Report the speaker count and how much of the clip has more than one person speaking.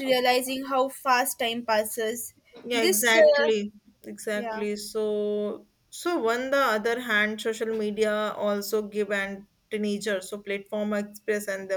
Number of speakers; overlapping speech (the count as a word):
two, about 9%